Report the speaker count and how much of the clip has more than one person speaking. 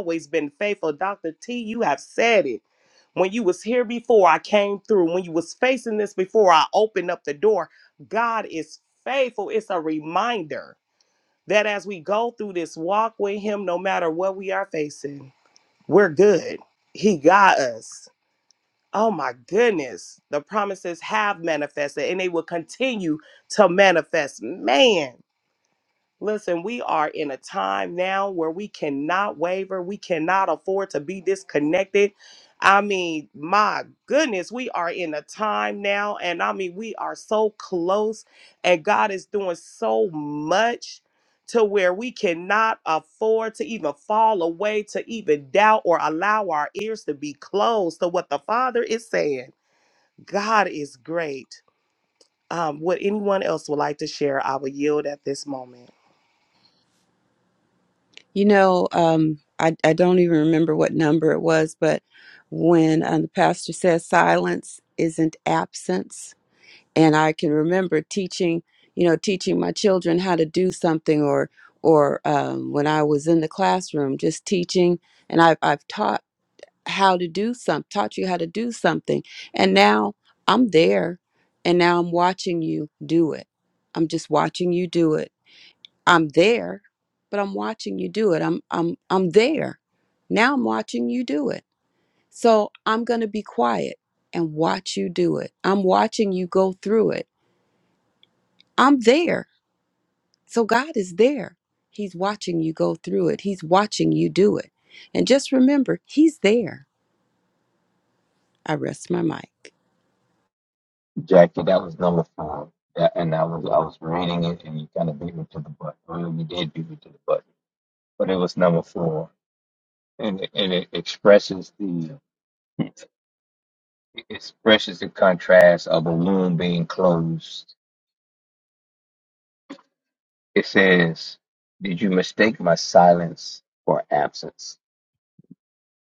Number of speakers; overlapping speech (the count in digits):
3, no overlap